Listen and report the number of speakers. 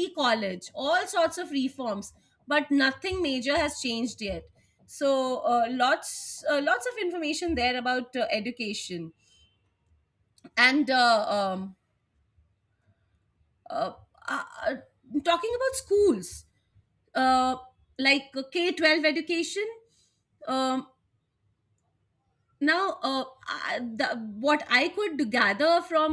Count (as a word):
one